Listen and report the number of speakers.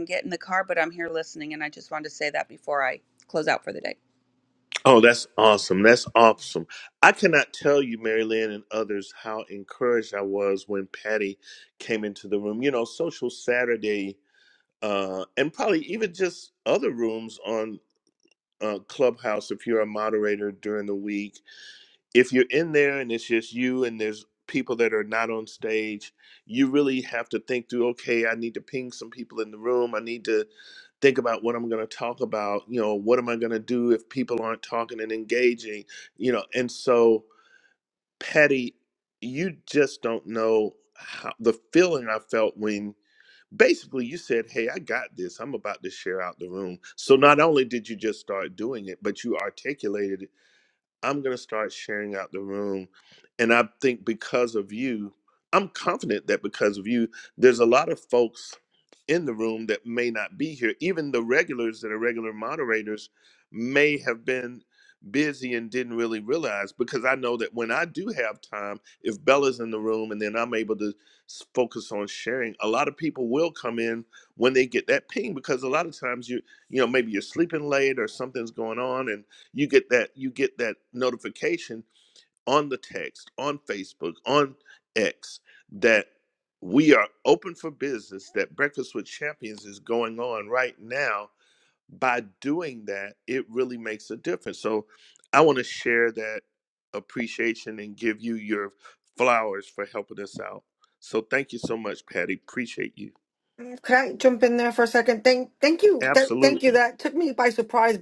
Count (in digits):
3